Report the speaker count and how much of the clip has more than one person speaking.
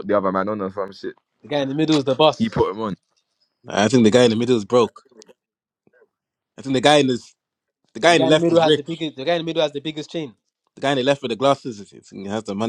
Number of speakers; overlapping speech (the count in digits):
3, about 8%